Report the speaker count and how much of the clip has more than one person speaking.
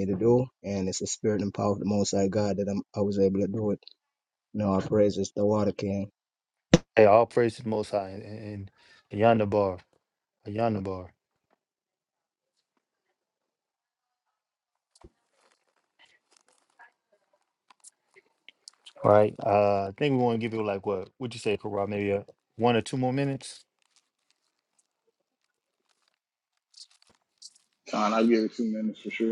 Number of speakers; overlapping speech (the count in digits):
3, no overlap